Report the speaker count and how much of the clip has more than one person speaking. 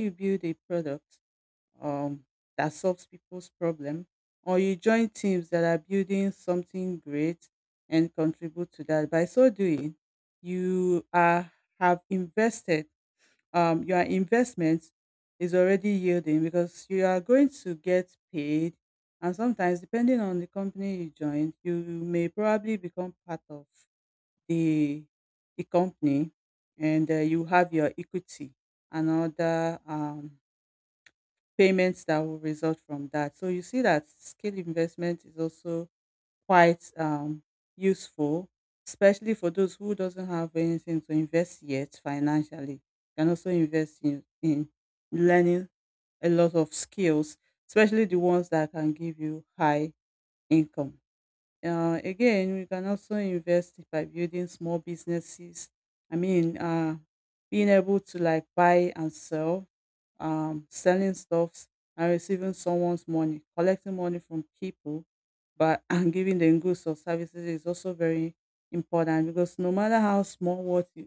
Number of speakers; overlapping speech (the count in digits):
1, no overlap